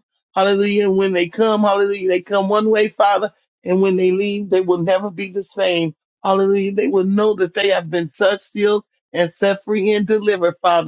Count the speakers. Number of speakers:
one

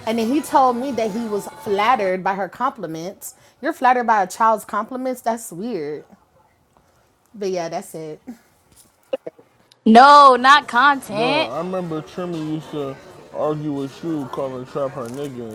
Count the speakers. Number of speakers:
three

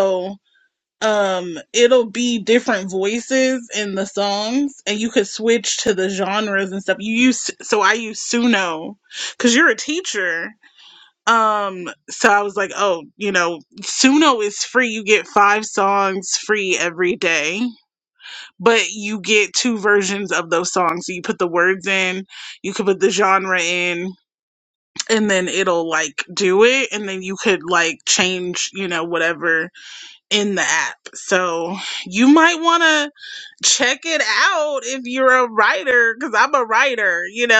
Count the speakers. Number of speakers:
one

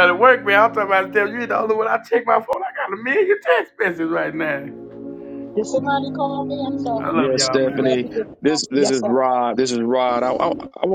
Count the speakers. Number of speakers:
three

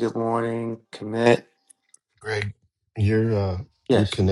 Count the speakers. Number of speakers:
two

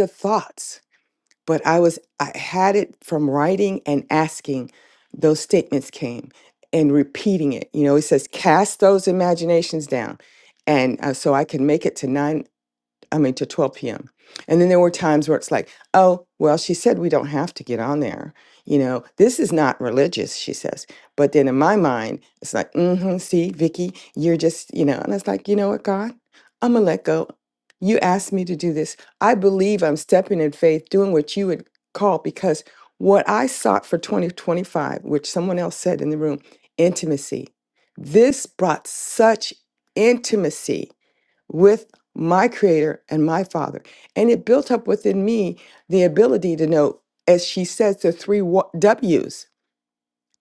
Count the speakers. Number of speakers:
one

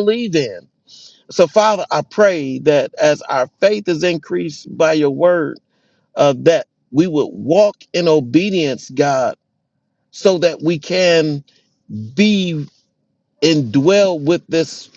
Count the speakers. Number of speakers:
one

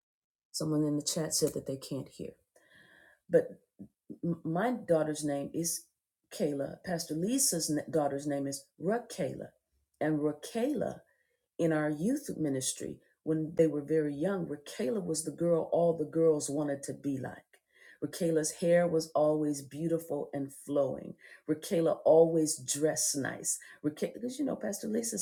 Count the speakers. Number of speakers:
one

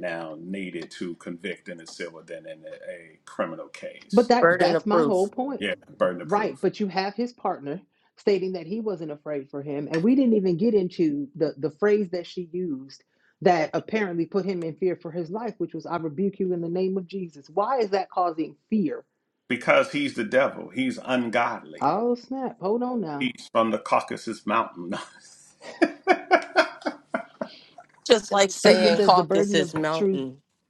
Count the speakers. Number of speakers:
three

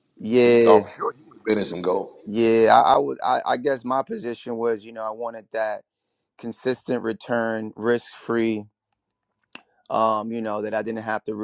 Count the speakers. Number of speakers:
two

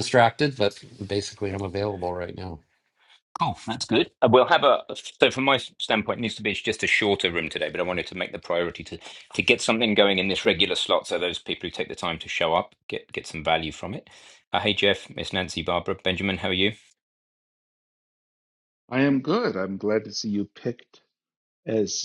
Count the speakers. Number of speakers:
three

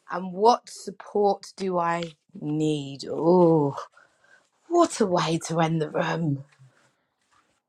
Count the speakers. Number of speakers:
one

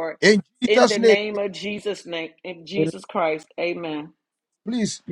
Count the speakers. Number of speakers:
two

